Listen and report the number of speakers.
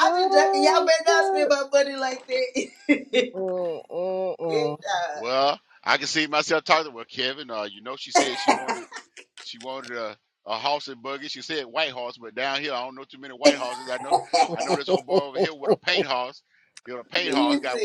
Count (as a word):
three